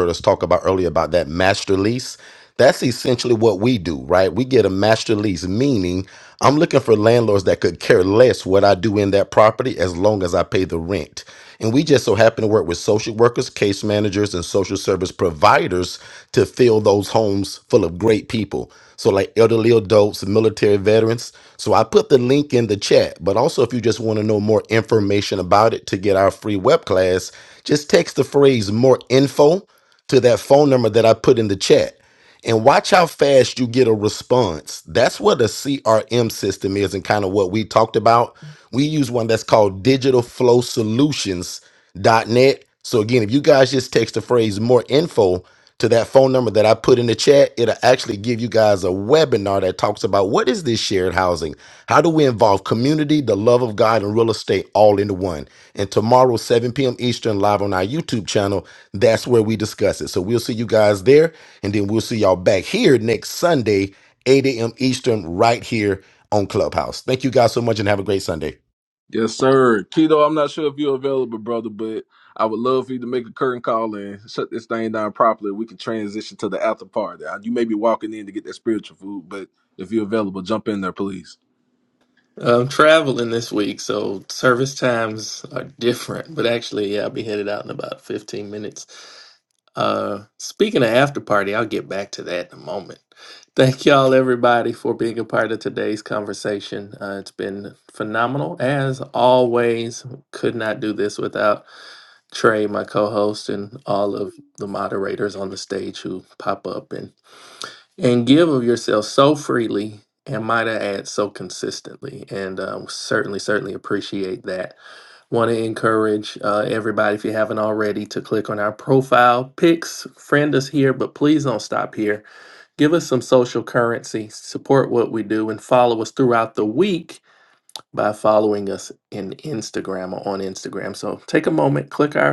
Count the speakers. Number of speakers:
3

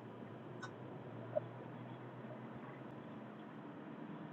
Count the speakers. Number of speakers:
0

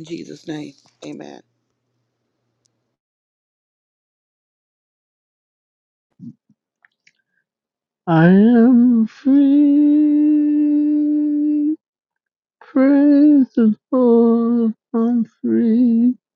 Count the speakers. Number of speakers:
2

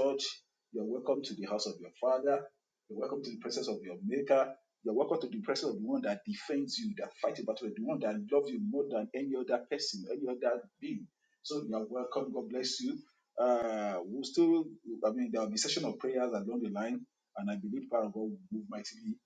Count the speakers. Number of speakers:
1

